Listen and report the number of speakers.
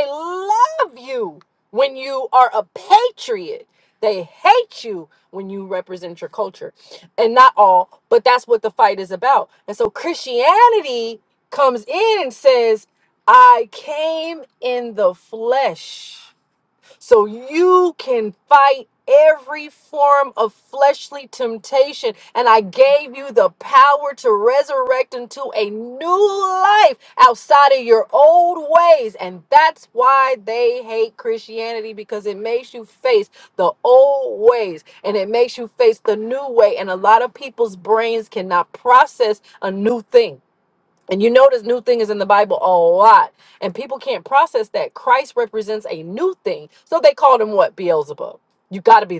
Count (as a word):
one